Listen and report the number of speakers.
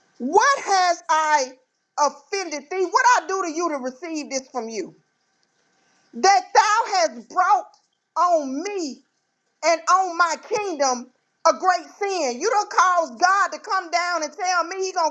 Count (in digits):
1